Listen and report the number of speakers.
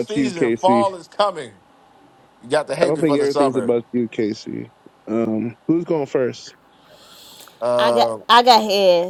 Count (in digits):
3